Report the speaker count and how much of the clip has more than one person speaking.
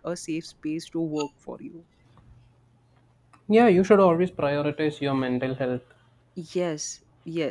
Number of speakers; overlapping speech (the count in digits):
2, no overlap